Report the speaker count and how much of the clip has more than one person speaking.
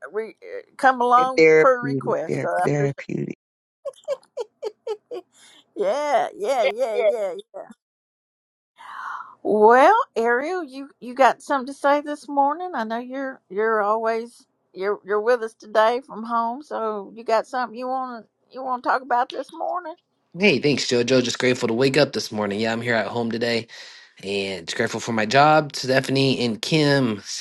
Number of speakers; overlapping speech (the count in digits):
3, about 5%